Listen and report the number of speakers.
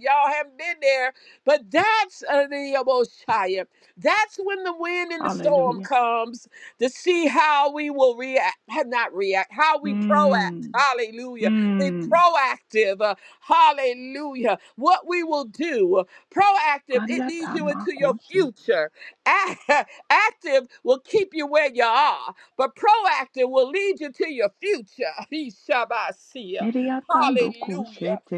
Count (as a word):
two